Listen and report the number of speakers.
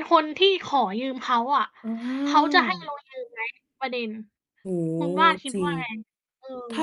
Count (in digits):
2